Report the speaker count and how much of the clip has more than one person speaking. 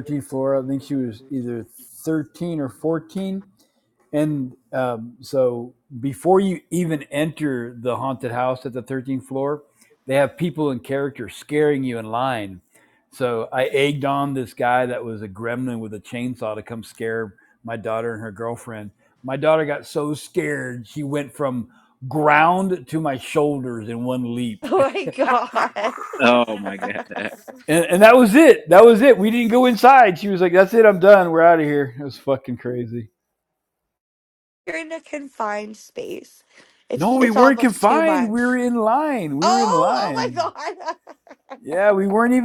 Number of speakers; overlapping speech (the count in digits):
3, about 6%